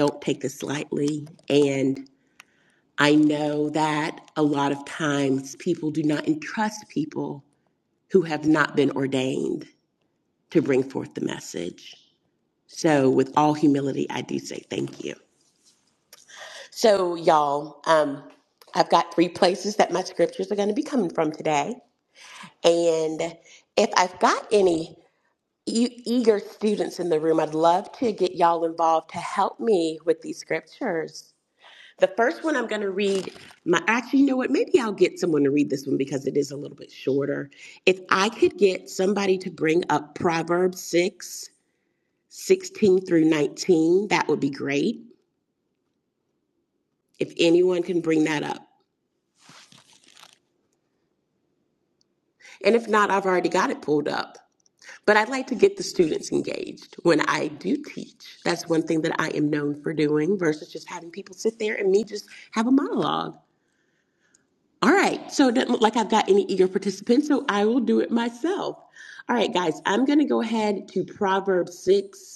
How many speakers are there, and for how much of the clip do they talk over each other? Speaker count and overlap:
one, no overlap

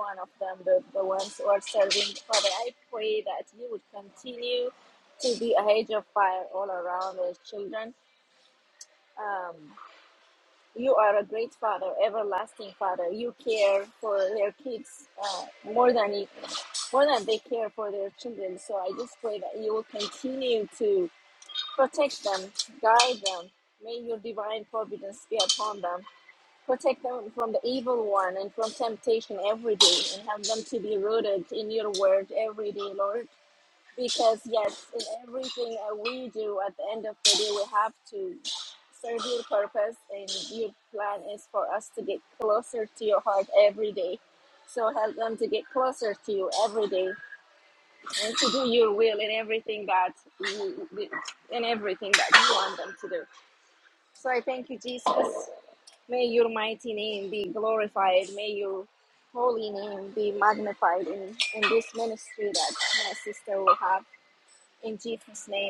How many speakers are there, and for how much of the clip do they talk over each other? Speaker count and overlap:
one, no overlap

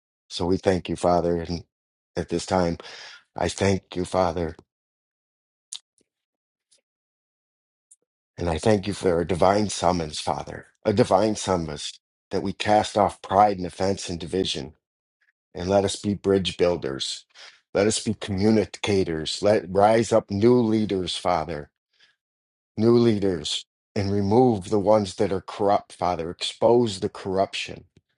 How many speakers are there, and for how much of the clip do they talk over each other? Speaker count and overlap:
one, no overlap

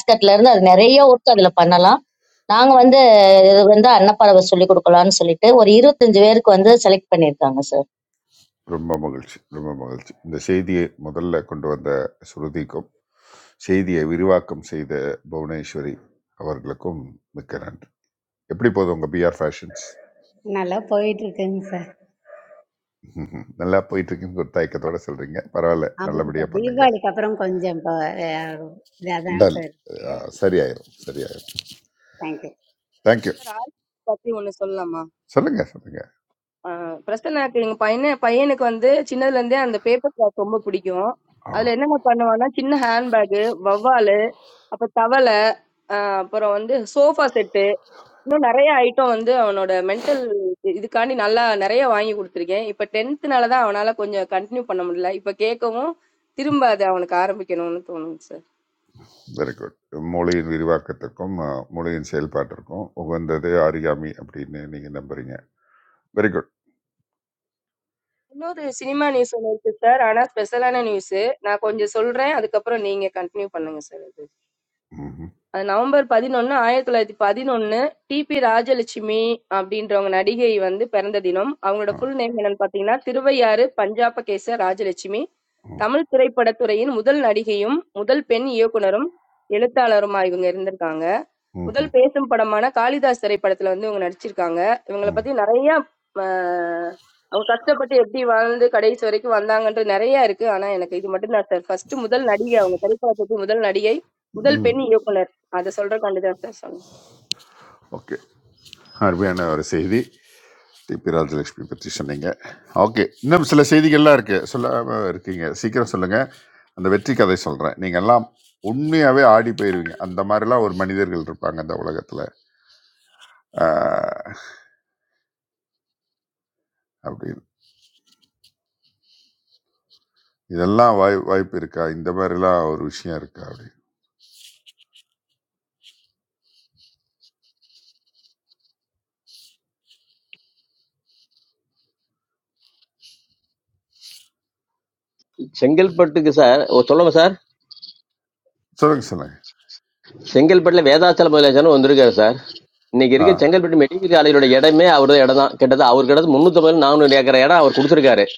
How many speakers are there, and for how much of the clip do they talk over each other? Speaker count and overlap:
five, about 1%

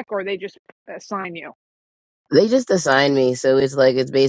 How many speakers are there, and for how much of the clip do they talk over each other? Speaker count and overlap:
two, no overlap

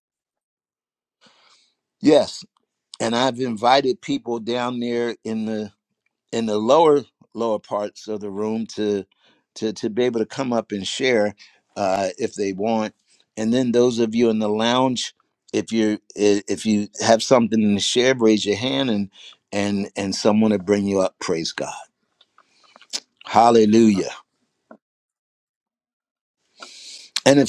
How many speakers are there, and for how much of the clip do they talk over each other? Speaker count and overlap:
one, no overlap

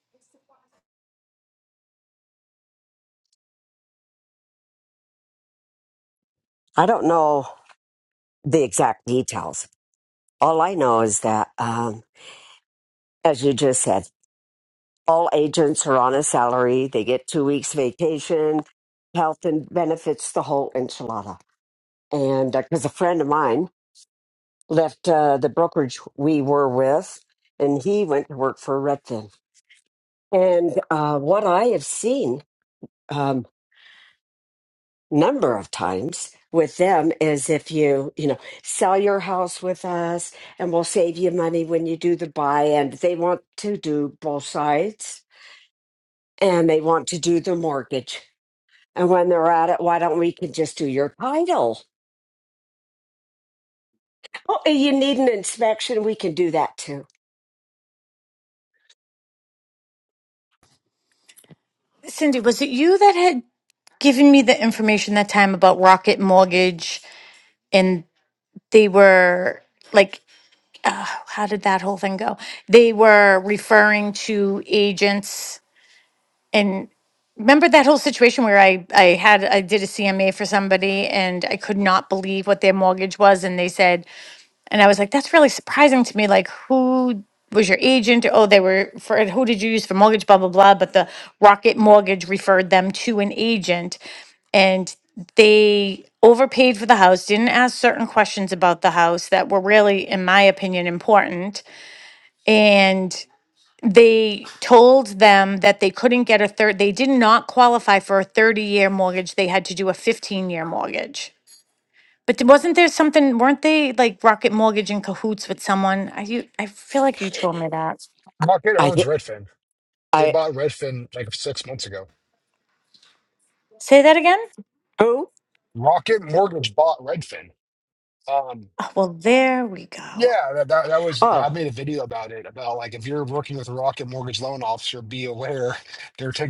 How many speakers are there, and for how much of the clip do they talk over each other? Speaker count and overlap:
three, about 1%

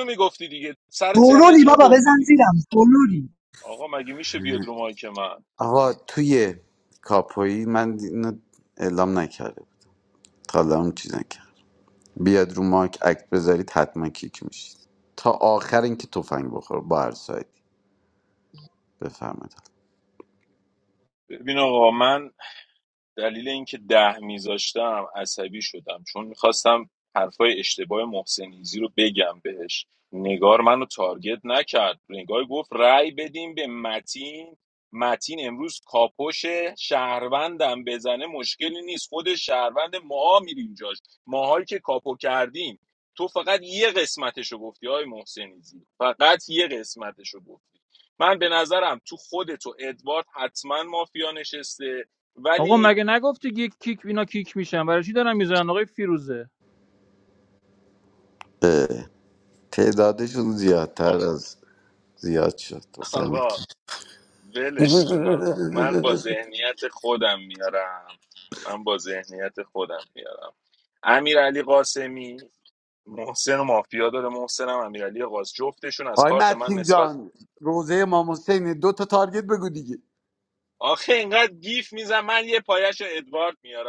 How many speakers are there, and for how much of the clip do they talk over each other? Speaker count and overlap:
four, about 4%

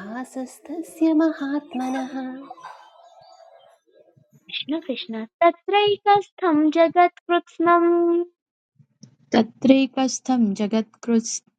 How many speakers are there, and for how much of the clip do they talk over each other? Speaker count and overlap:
three, no overlap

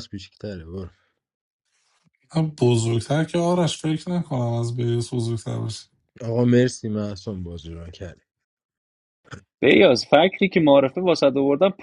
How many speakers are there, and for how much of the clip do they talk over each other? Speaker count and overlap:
three, no overlap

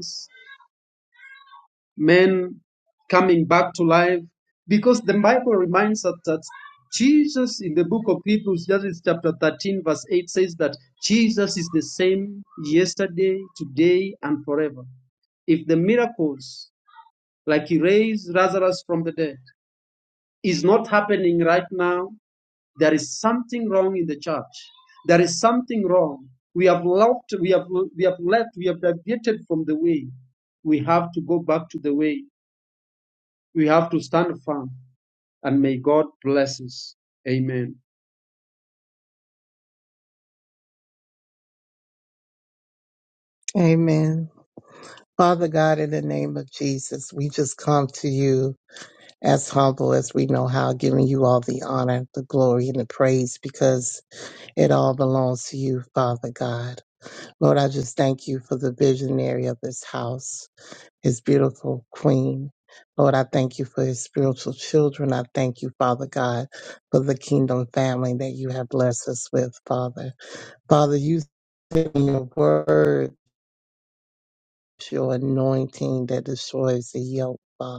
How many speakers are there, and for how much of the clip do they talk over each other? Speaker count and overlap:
two, no overlap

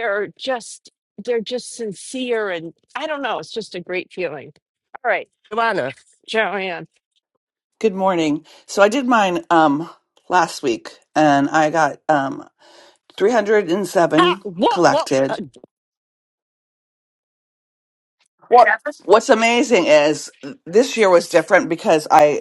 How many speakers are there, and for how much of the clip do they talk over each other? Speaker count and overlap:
three, about 3%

